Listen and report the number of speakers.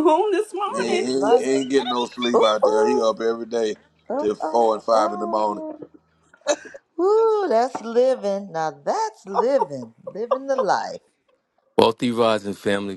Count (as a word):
four